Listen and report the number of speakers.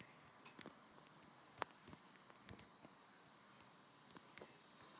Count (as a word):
zero